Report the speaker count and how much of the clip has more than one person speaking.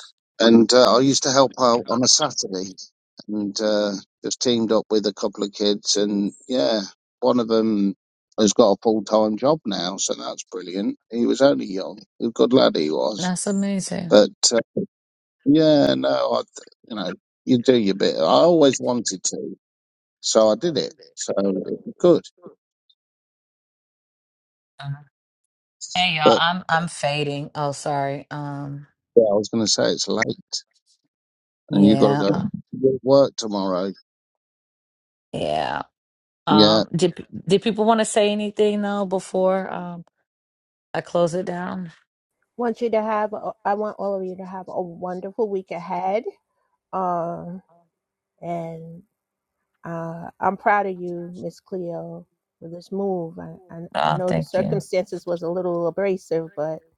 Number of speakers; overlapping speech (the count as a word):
three, about 4%